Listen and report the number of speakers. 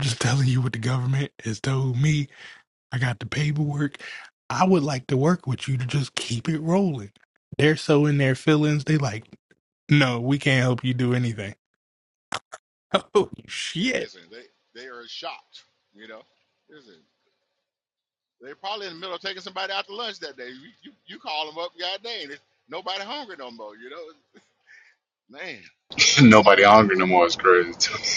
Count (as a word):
three